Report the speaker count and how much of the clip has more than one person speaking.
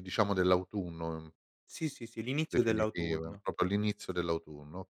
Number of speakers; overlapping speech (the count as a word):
two, about 17%